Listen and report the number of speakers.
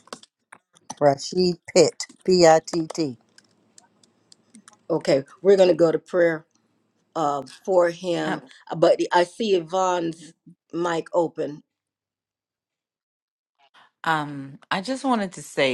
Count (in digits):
3